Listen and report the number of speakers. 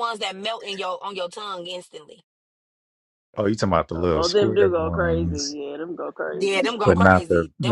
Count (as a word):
three